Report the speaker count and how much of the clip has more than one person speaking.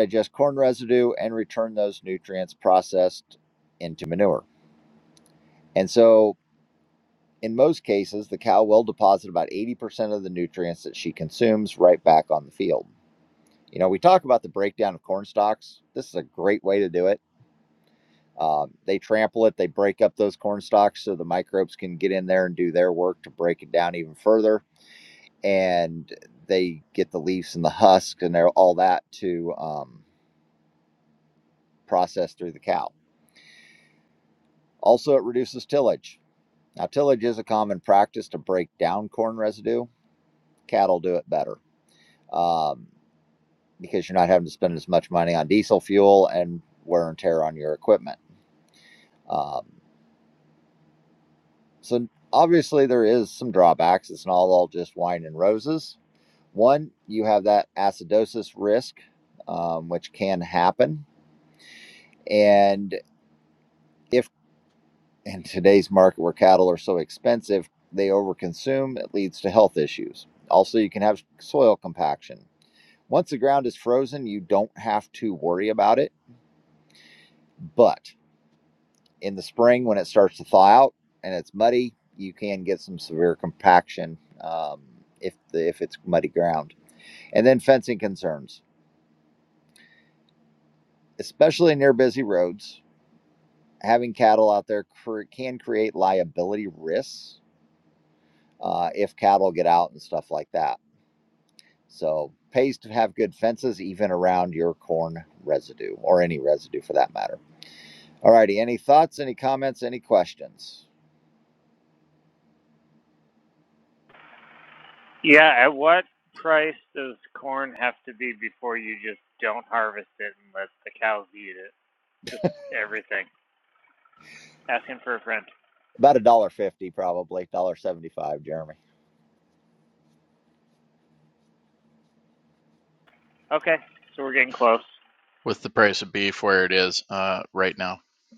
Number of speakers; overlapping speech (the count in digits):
3, no overlap